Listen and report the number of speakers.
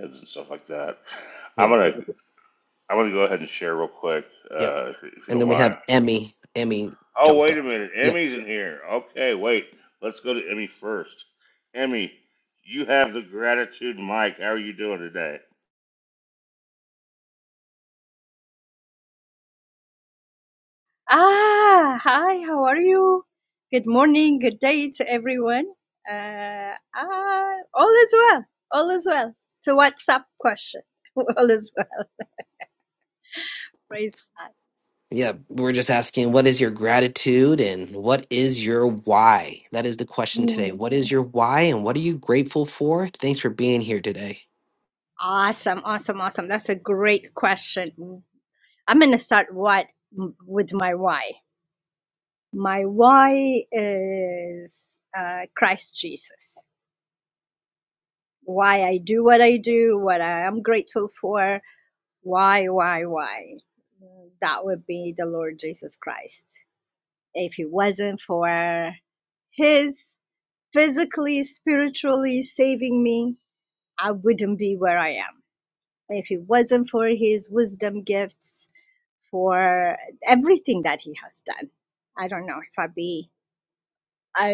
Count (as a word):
three